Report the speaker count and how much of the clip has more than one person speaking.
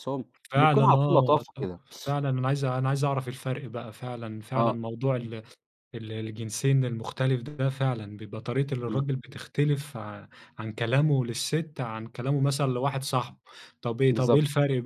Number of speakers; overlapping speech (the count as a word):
two, about 11%